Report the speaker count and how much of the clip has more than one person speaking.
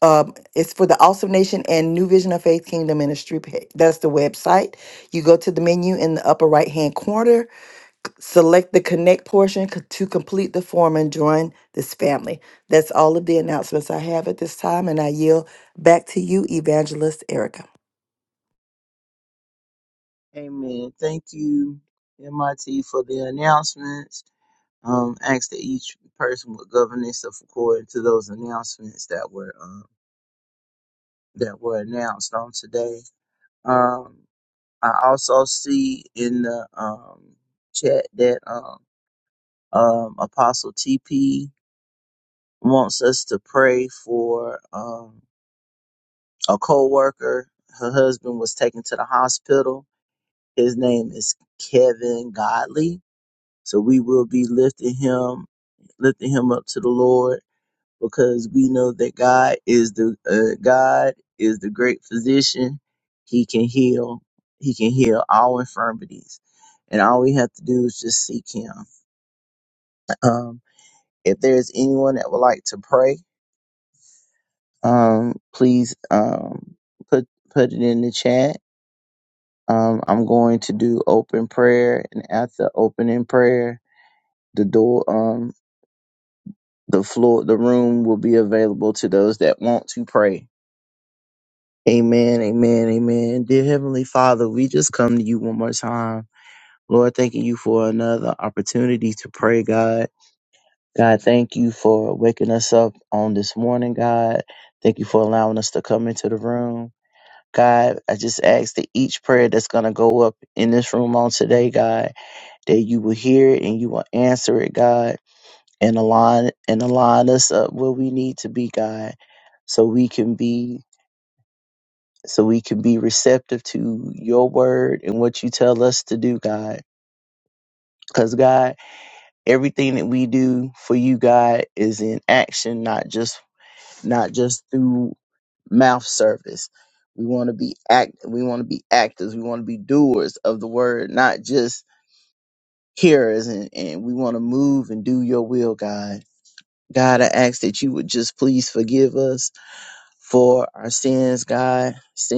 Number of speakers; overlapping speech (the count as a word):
two, no overlap